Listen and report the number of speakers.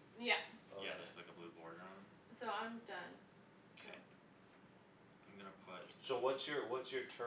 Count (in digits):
3